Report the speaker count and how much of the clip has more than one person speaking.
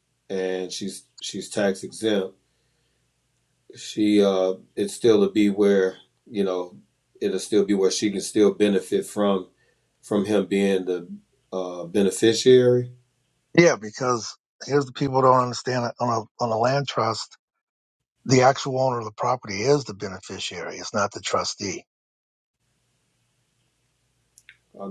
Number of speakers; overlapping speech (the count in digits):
2, no overlap